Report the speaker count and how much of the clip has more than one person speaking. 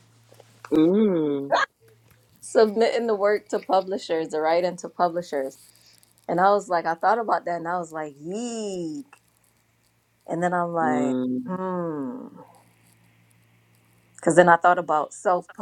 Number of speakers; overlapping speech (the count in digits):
2, about 2%